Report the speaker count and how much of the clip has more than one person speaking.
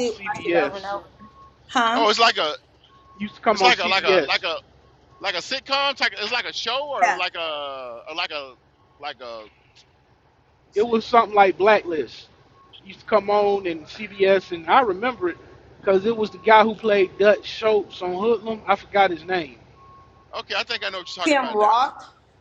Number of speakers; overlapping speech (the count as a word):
three, about 11%